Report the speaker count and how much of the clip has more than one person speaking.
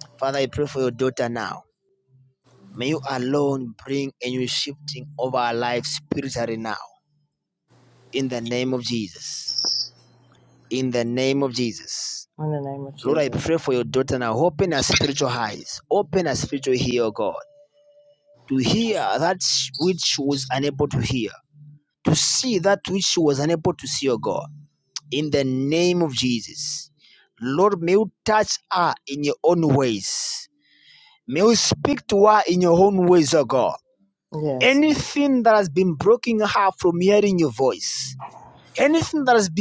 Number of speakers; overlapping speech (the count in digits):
2, about 1%